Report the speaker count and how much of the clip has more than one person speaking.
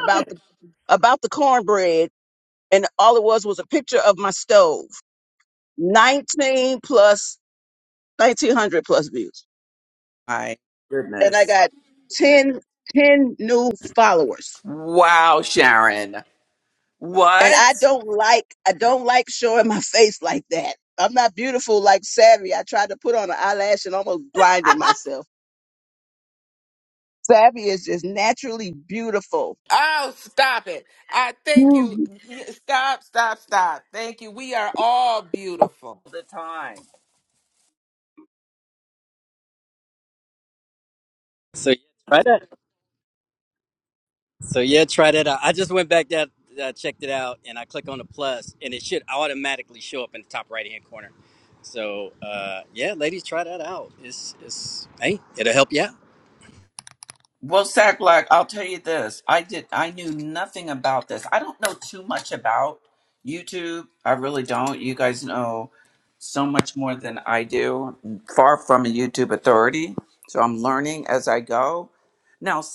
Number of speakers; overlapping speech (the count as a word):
four, about 2%